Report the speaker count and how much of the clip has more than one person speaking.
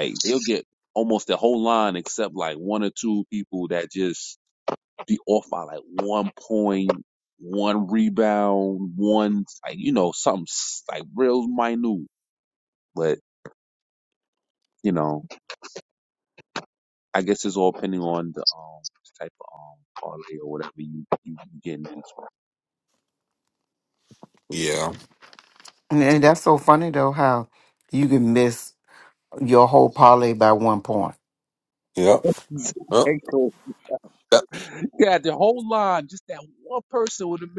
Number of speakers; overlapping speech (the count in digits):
3, no overlap